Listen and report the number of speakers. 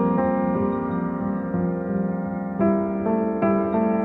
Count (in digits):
0